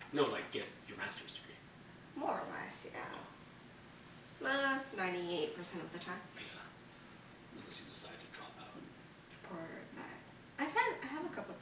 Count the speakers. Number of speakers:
2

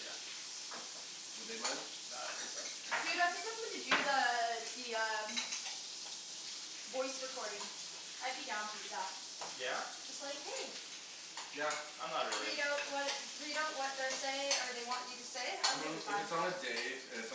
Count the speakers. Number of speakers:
3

